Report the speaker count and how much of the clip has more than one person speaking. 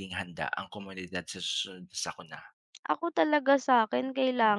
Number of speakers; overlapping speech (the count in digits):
2, no overlap